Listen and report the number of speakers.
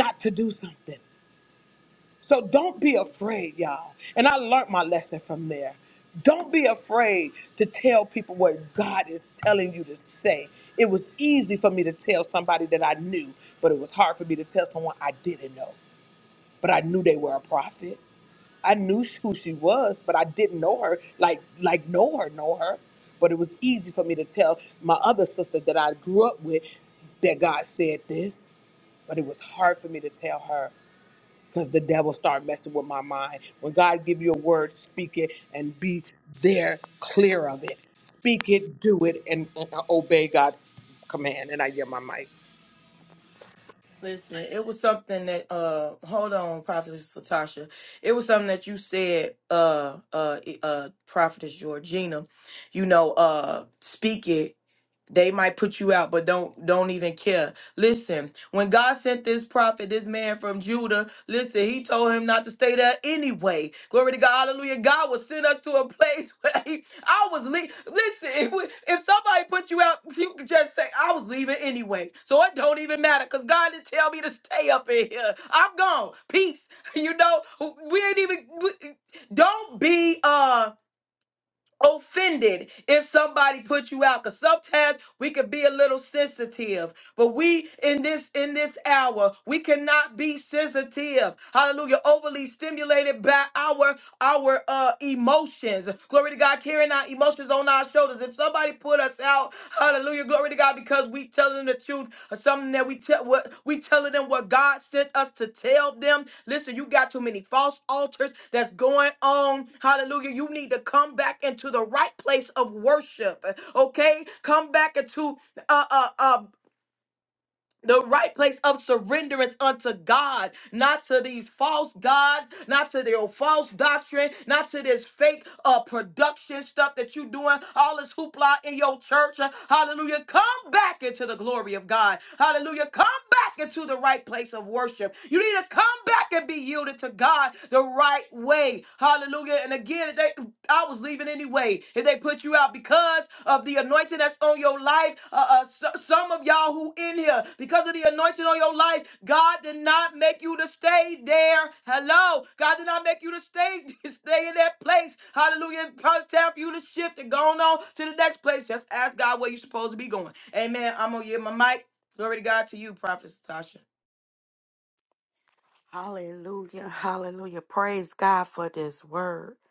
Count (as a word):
three